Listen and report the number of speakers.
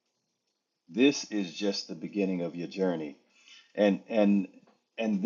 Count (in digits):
1